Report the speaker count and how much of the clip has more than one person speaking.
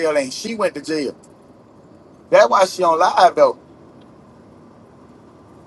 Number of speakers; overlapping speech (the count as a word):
one, no overlap